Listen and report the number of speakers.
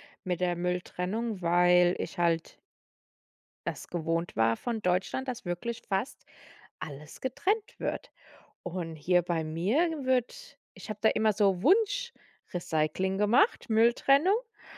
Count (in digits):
1